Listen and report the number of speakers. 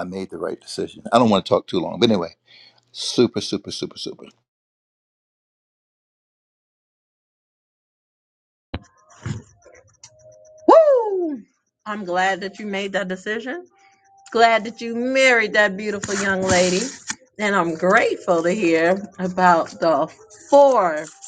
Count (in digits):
2